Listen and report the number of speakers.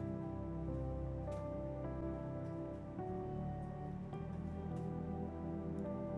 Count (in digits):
0